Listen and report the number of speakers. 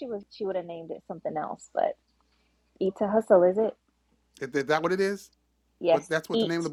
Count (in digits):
2